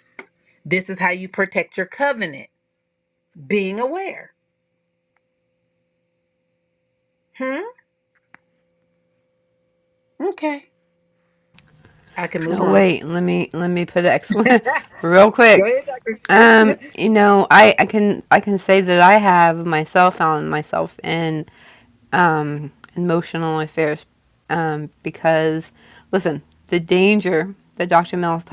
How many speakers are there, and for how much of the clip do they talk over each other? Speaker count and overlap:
2, about 4%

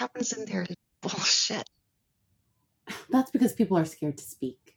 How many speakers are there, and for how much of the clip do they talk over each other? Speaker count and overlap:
2, no overlap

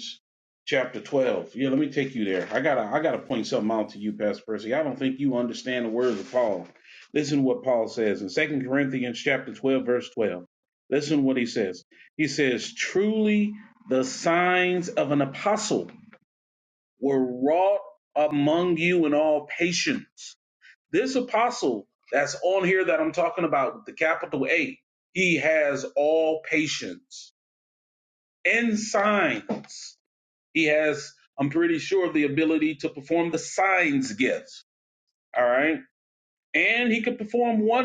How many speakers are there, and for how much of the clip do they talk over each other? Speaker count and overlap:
1, no overlap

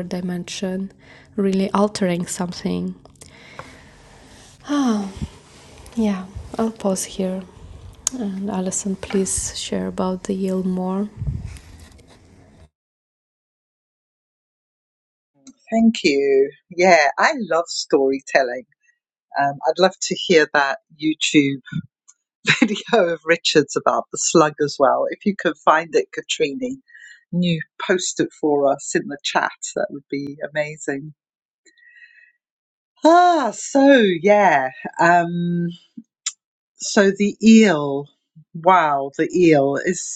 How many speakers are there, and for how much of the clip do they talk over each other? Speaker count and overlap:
2, no overlap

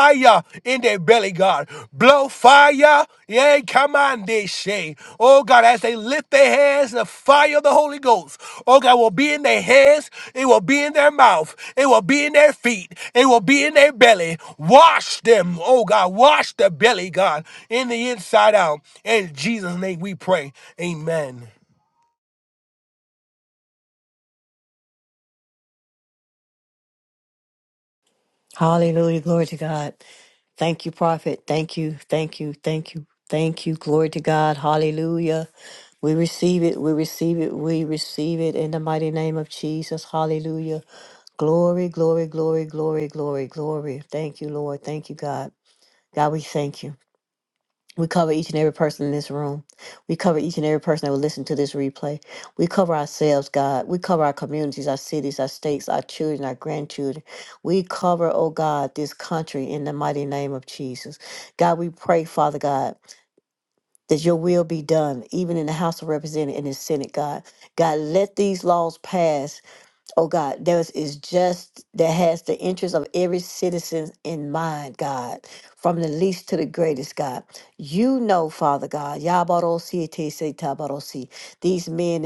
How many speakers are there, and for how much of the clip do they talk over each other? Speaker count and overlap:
2, no overlap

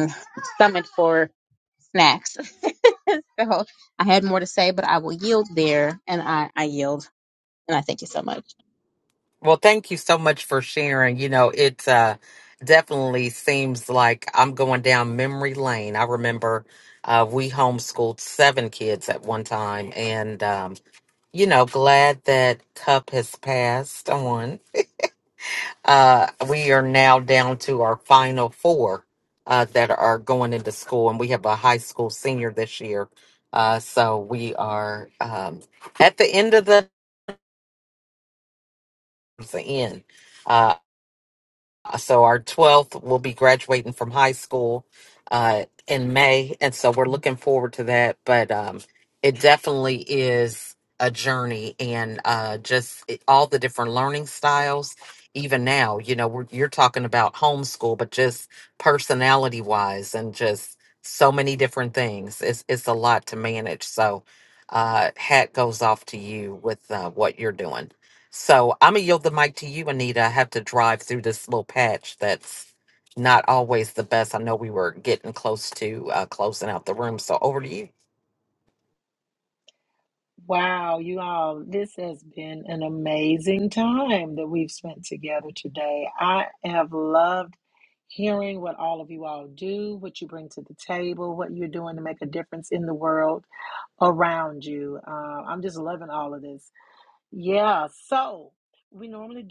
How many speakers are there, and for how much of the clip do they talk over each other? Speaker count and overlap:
3, no overlap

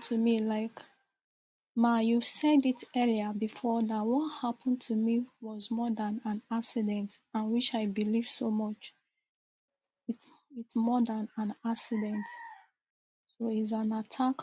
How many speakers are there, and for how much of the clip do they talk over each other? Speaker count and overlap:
1, no overlap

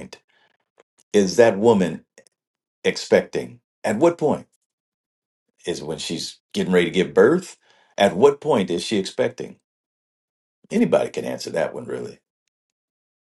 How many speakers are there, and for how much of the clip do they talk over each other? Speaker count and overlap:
1, no overlap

